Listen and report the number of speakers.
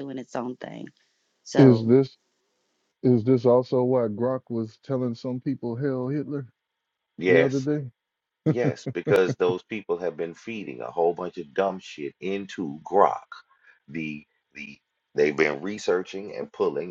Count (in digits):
3